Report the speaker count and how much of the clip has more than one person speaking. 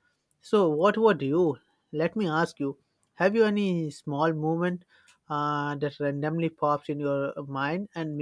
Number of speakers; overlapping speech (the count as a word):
one, no overlap